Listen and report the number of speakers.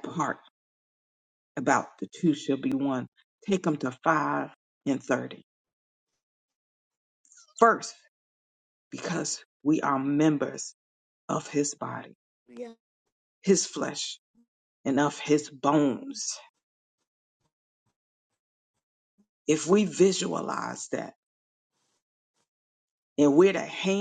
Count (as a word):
one